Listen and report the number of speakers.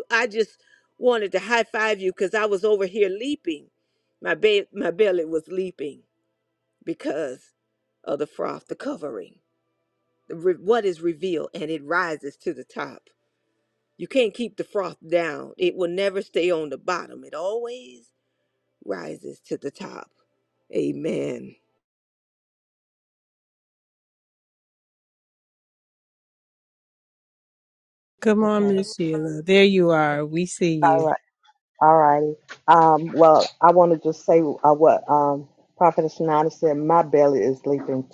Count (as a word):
three